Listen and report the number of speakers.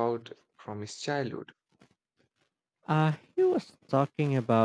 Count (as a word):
two